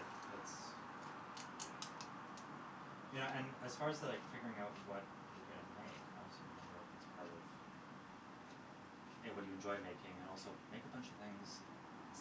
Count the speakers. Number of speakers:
one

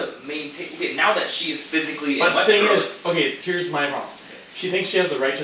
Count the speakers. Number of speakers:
two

